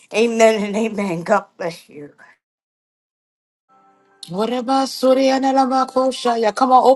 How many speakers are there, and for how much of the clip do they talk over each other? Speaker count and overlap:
two, no overlap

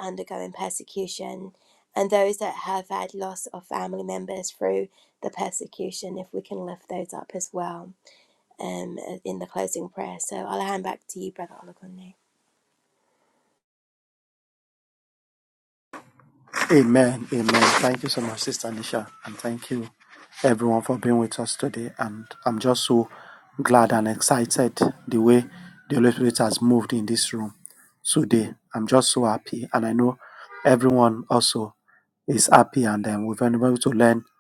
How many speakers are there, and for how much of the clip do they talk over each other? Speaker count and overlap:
two, no overlap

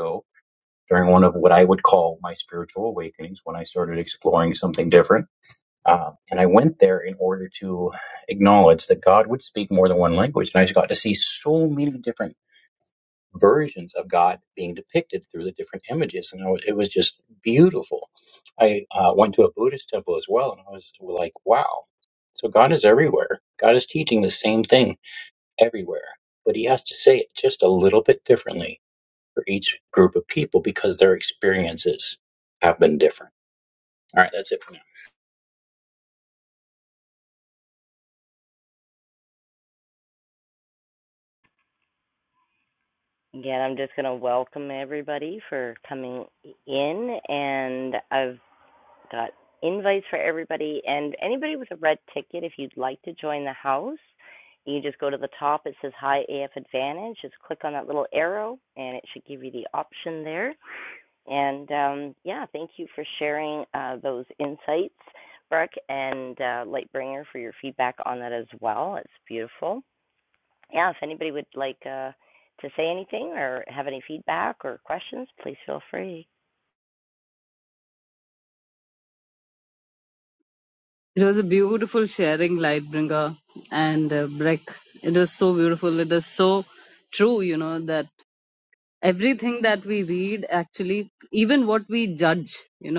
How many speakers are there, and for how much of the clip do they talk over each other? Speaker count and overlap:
three, no overlap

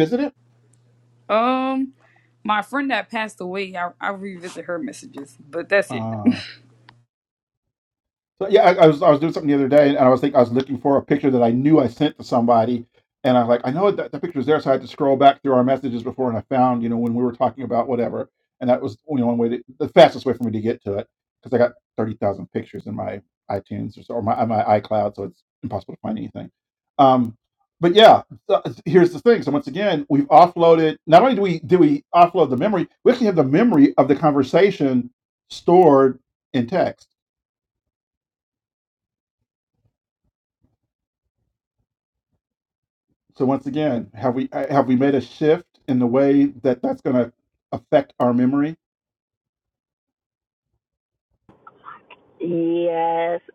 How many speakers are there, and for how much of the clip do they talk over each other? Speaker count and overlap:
three, under 1%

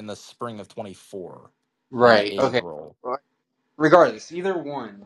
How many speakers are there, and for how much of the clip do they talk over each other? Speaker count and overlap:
two, about 13%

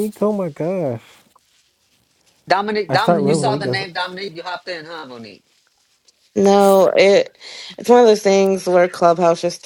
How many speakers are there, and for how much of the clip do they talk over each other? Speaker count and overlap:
three, about 10%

